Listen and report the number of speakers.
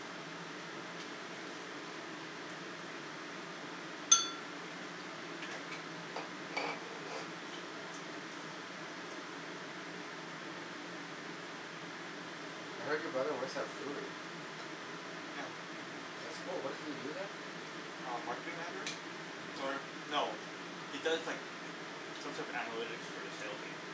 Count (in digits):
2